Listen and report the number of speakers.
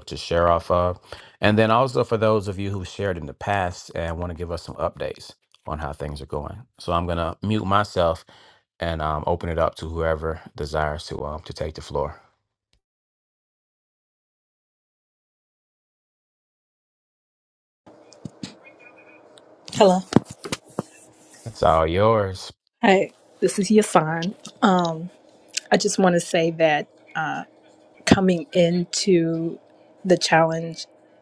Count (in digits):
2